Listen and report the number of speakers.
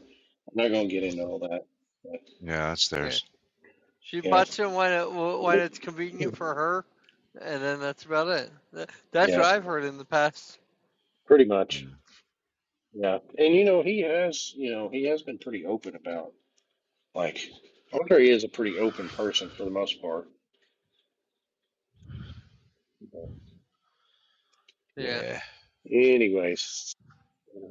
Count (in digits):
3